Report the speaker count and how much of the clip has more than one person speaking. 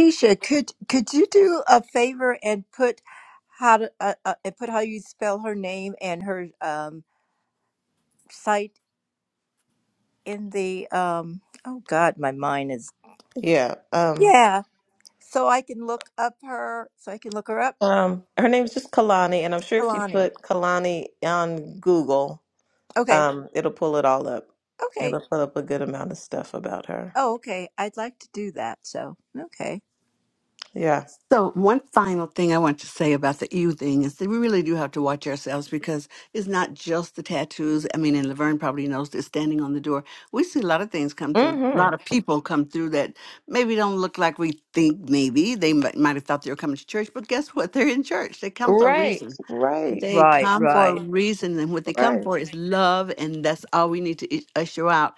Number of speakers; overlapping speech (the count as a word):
three, about 6%